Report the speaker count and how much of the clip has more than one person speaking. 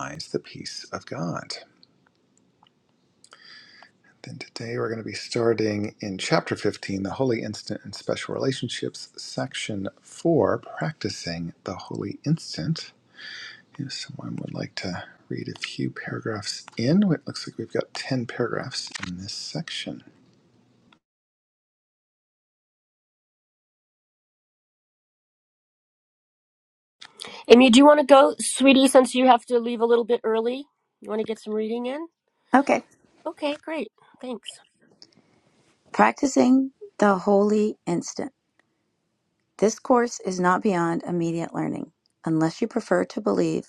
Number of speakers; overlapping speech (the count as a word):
three, no overlap